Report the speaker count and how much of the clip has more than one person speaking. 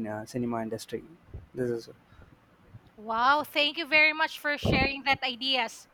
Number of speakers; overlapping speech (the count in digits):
2, no overlap